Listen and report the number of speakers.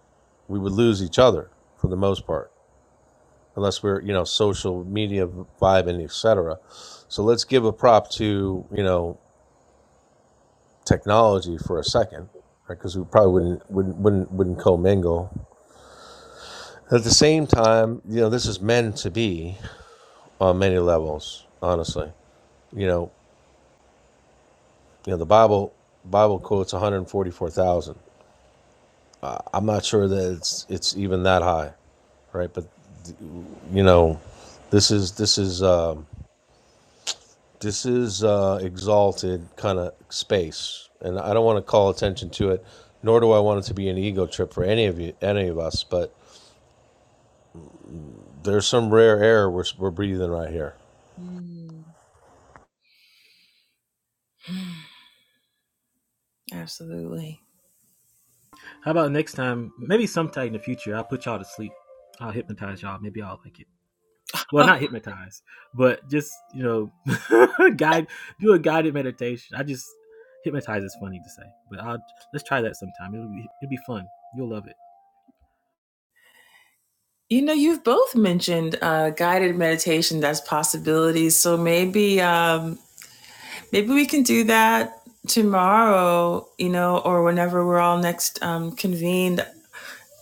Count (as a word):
three